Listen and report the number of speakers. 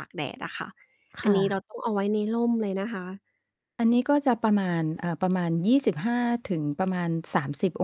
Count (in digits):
2